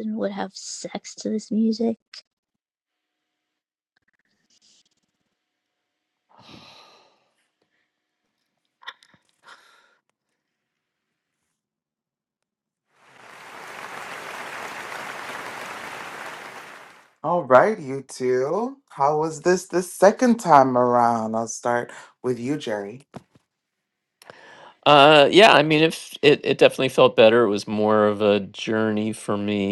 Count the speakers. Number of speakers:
three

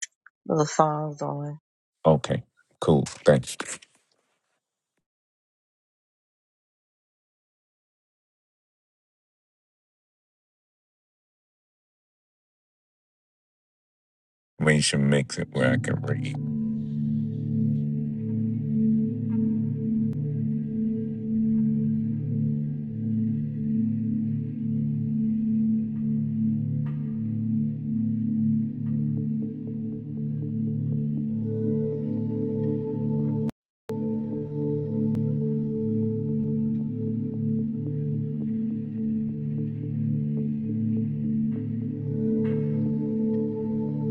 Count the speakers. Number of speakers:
two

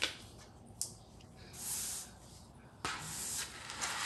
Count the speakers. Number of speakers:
zero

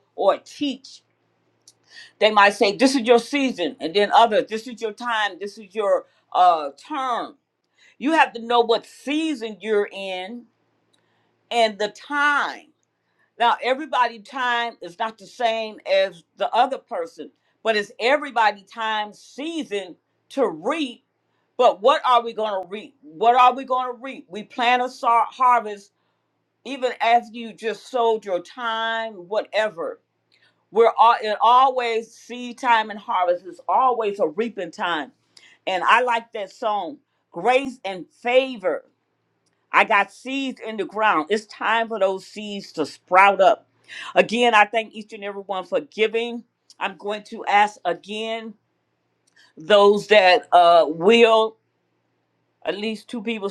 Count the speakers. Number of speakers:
one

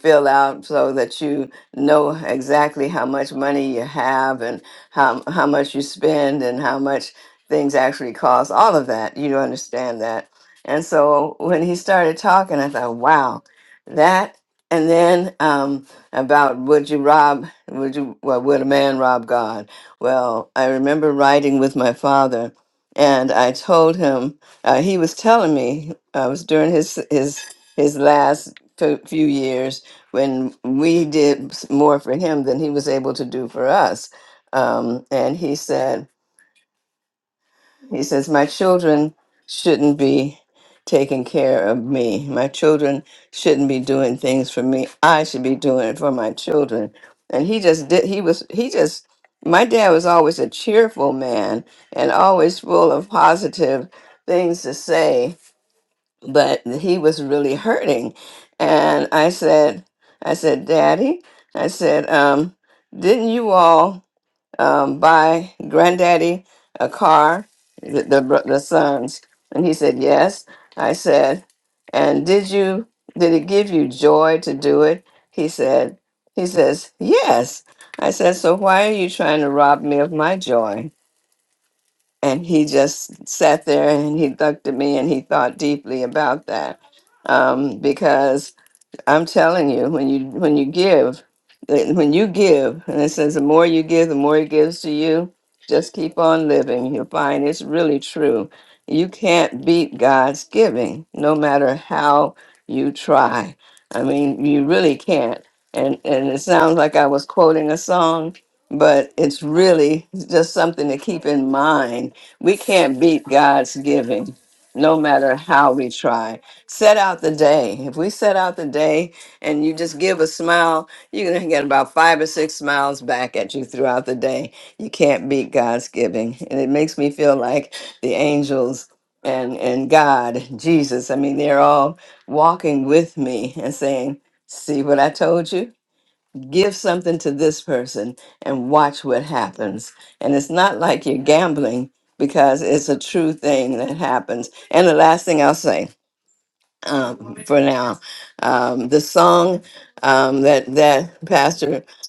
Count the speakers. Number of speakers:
one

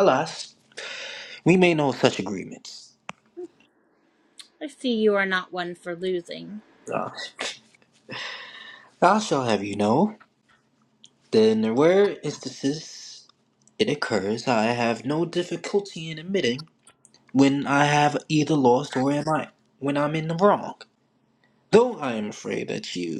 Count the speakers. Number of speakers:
two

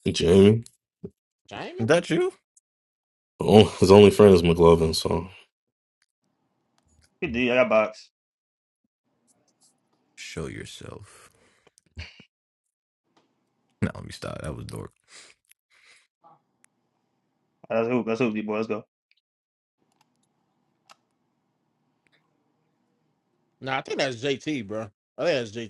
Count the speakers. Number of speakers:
four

